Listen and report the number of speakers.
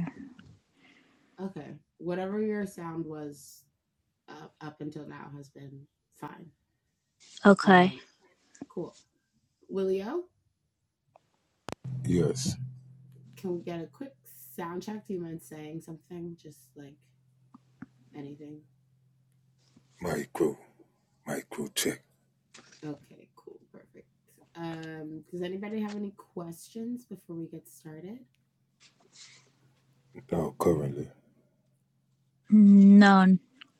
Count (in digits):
3